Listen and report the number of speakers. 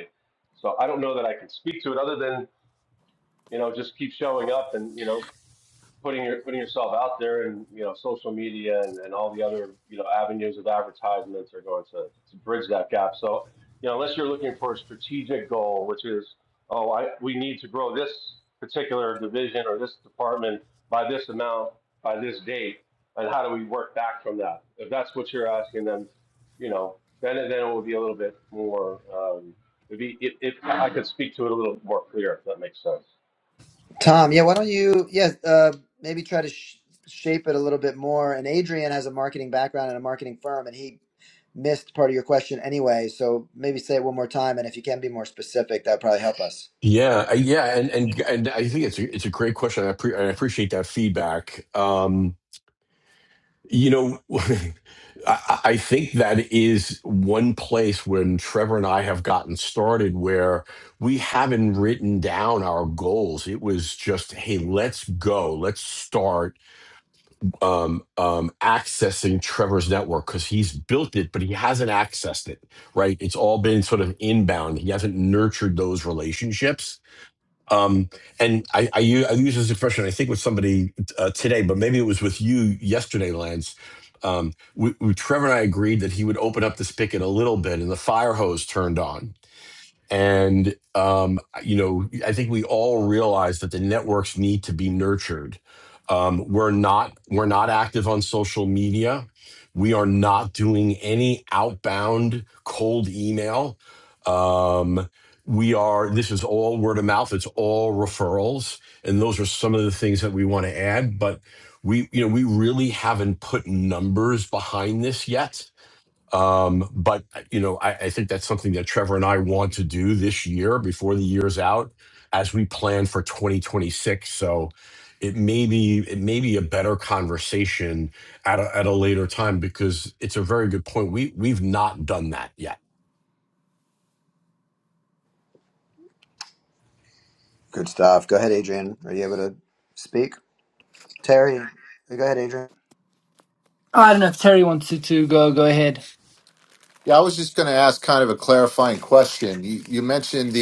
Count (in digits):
5